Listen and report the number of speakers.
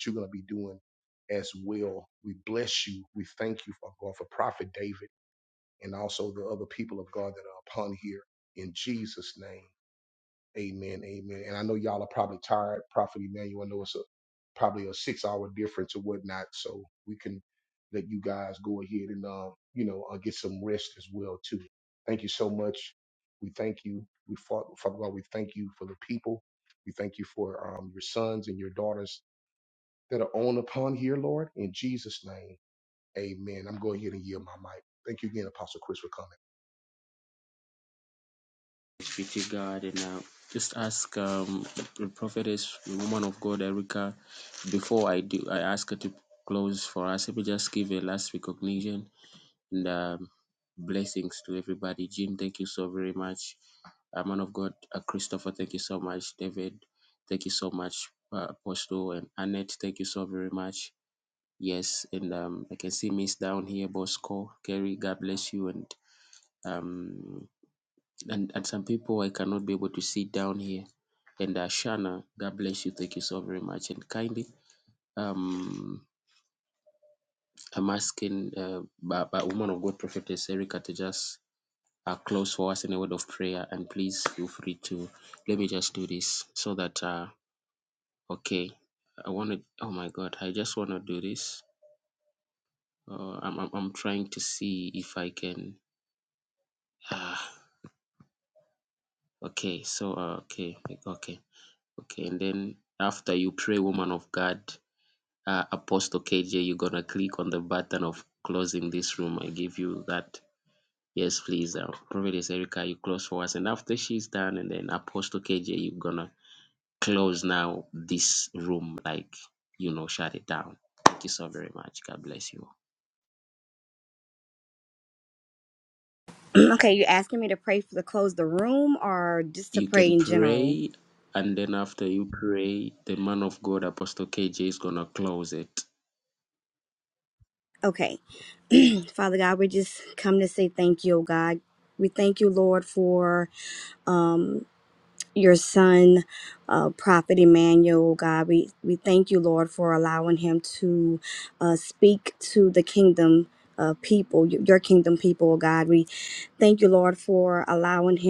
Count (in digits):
3